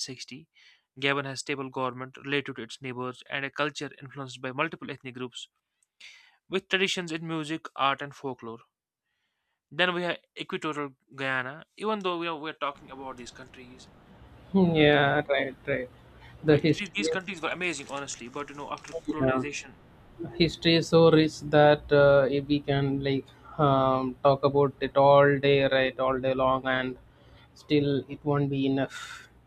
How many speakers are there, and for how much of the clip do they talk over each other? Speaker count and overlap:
two, about 6%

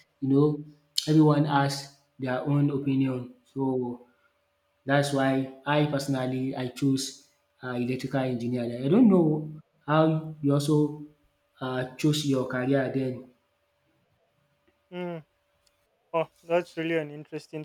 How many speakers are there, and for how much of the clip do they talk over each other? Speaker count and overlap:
two, no overlap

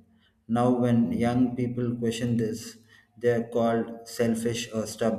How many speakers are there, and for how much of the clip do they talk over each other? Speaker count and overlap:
one, no overlap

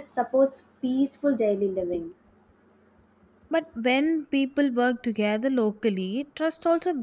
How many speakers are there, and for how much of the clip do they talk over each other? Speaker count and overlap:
two, no overlap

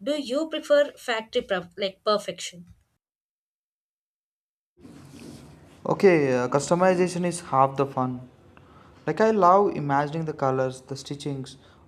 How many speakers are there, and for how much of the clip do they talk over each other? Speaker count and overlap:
two, no overlap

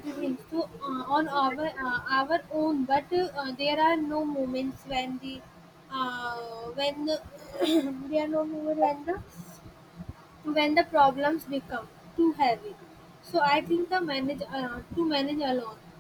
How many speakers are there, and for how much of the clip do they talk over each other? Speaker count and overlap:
one, no overlap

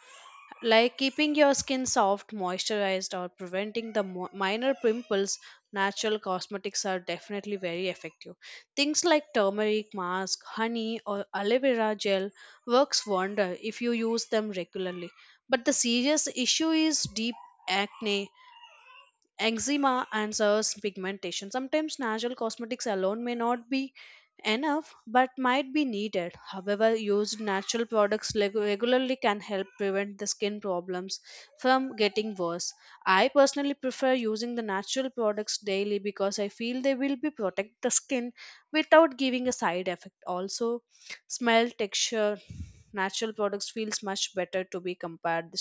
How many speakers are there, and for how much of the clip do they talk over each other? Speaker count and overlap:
one, no overlap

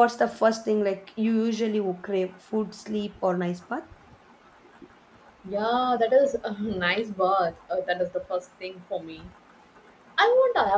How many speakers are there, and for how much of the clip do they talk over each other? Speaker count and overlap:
two, no overlap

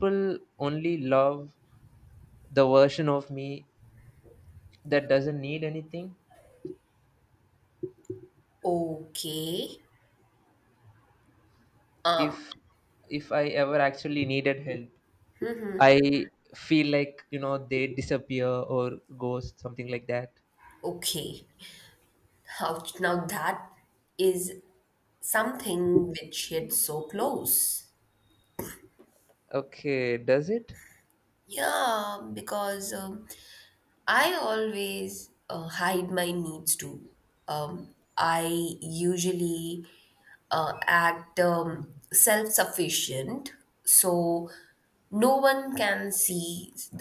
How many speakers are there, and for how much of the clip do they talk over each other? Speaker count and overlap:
two, no overlap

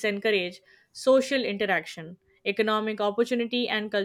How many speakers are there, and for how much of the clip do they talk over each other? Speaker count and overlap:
one, no overlap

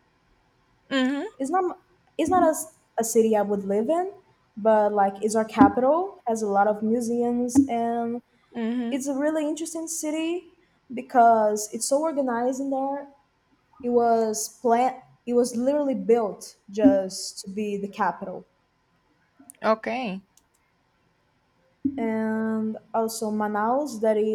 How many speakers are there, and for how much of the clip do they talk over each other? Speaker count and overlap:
two, under 1%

